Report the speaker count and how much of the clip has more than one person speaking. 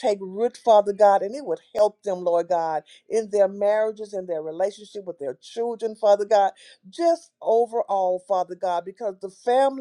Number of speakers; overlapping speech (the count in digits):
1, no overlap